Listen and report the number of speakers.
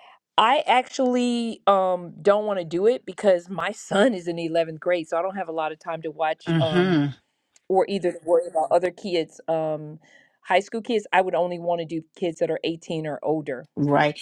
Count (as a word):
two